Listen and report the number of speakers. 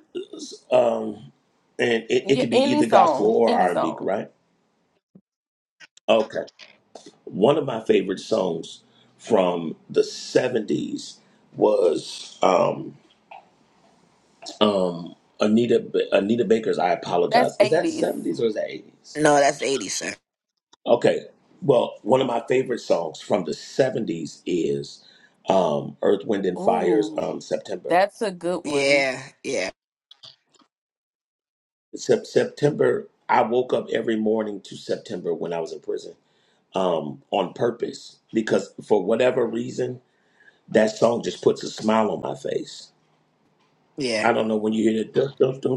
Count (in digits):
3